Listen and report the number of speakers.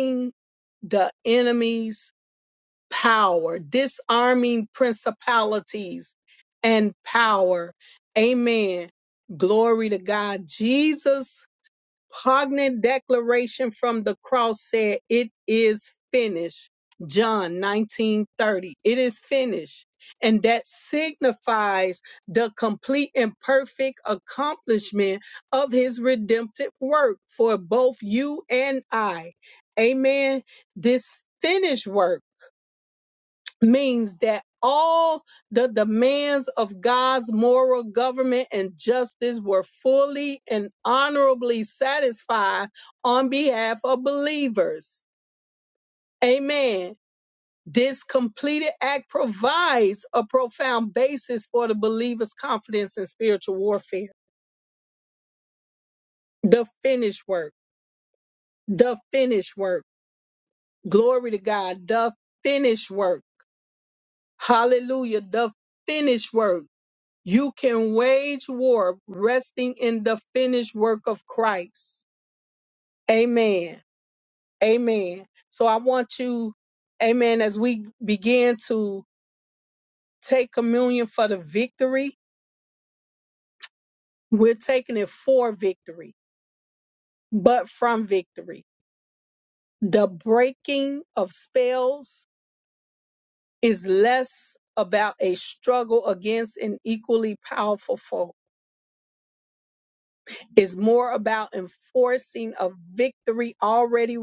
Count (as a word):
one